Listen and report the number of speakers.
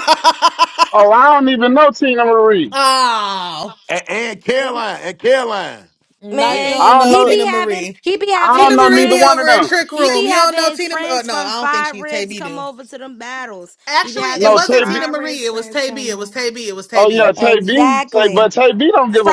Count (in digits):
4